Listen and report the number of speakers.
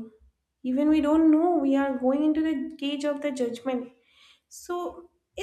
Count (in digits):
1